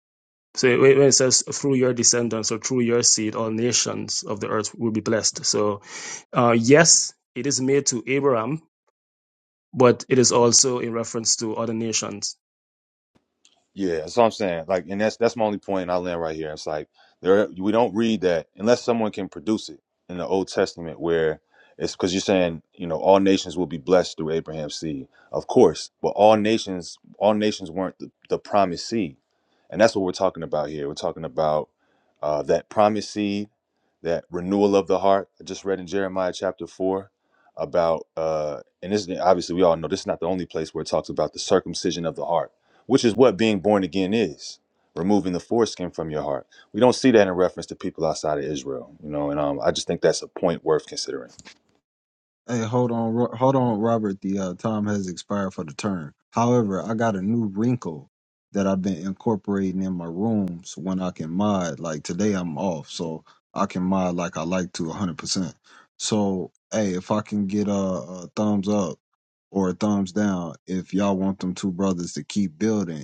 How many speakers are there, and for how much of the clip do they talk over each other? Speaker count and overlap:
three, no overlap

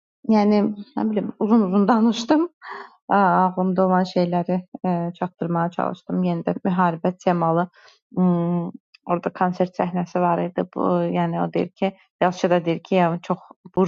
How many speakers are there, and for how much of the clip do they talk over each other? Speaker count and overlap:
one, no overlap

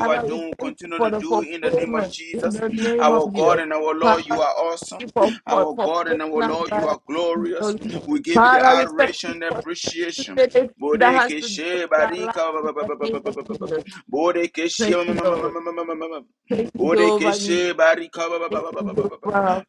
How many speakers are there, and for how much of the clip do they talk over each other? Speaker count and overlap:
two, about 67%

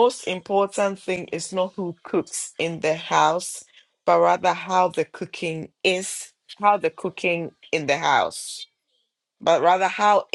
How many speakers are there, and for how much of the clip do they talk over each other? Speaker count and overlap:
one, no overlap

